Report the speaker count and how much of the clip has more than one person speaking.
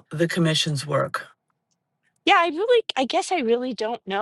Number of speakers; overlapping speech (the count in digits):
2, no overlap